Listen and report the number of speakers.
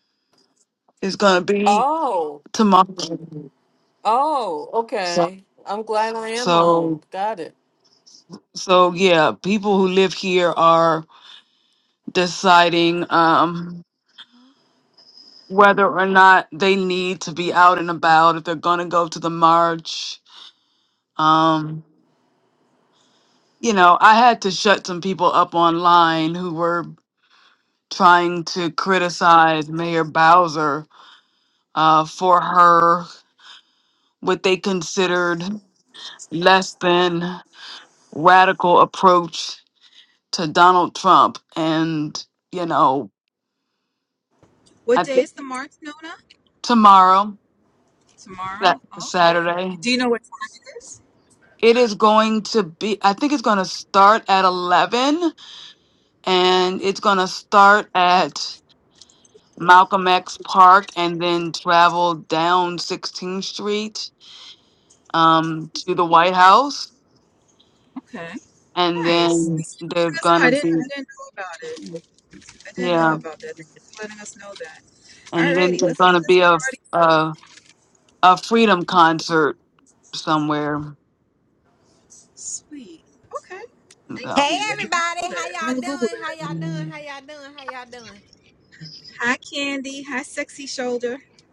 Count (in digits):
4